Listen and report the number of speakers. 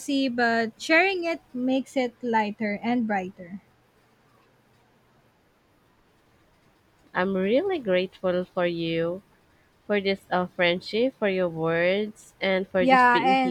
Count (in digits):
2